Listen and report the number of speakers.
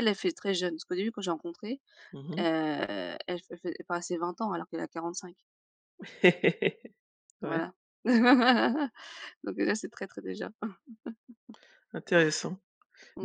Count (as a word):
two